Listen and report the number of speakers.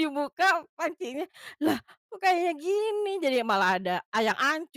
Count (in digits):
1